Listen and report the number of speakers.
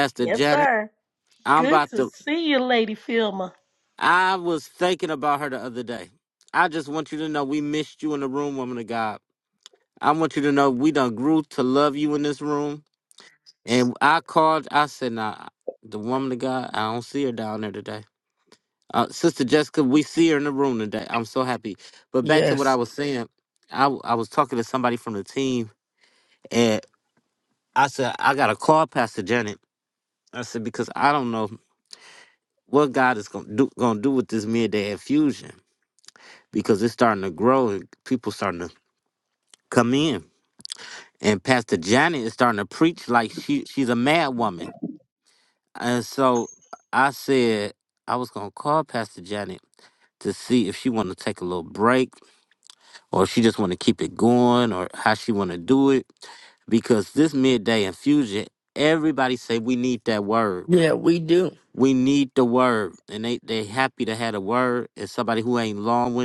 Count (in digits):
3